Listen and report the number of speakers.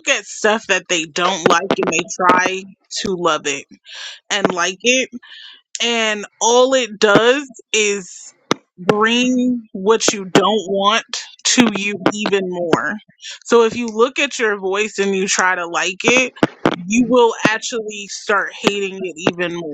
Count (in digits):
1